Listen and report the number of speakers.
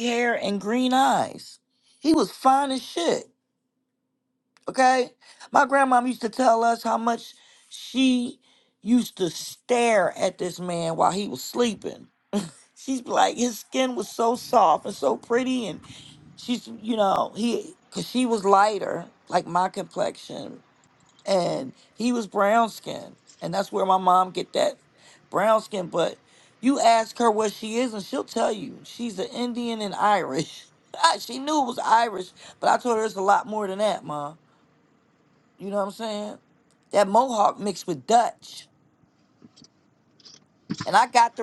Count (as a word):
one